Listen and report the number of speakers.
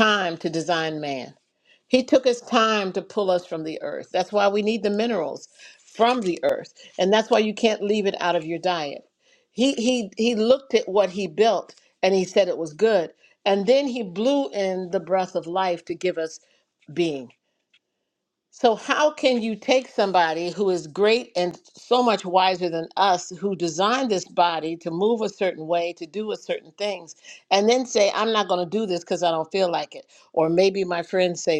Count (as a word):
one